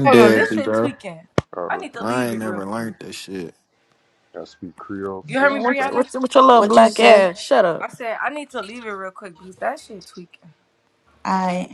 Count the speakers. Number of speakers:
5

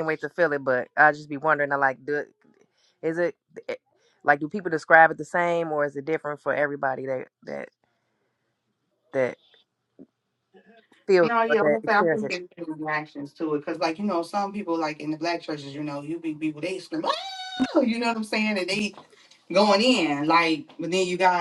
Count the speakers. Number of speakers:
2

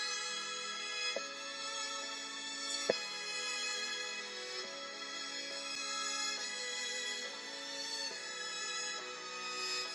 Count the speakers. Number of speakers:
0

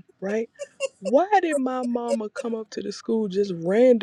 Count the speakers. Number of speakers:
1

